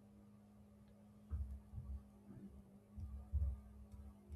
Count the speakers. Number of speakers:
0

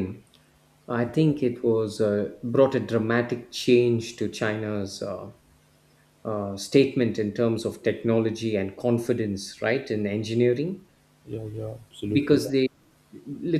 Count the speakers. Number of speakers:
2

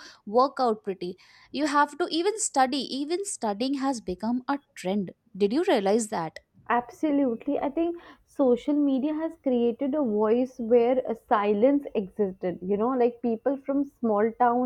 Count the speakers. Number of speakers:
2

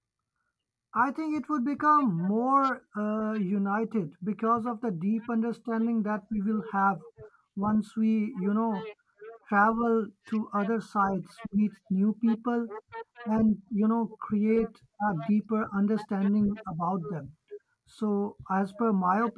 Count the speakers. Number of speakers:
1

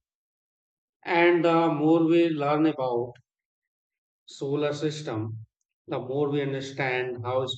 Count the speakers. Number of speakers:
1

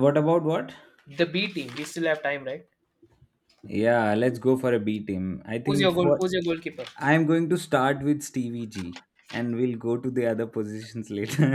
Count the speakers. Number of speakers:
2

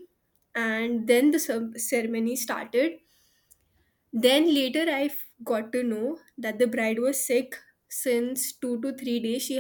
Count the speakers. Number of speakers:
1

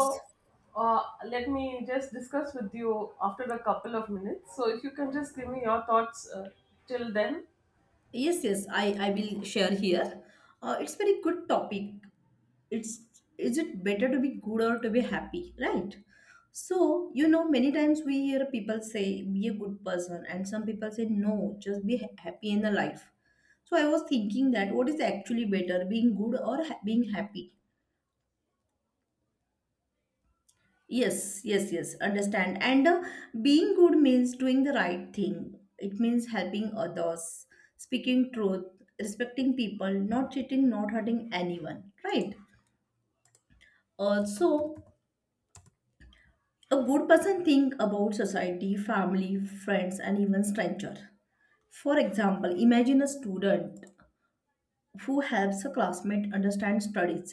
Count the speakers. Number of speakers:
2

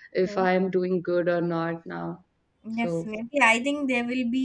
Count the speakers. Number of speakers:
2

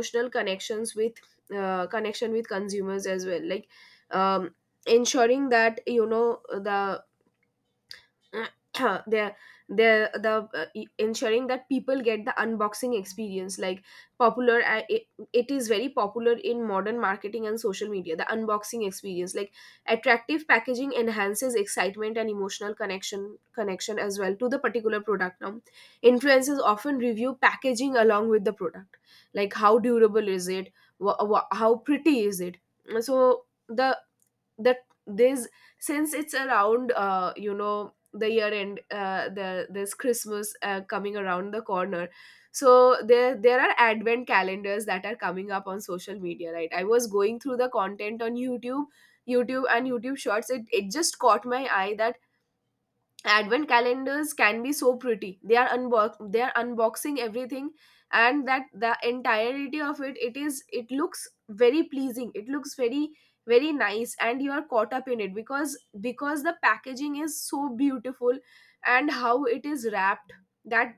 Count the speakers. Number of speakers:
1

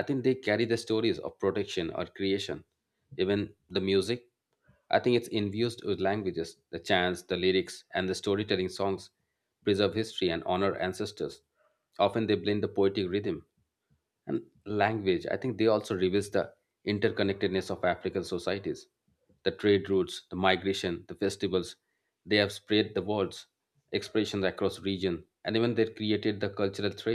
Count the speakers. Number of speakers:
1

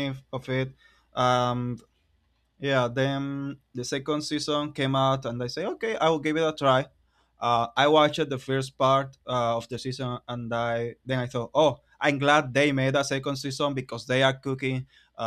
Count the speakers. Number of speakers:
1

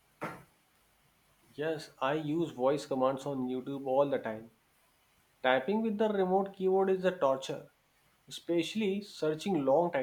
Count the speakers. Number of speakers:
1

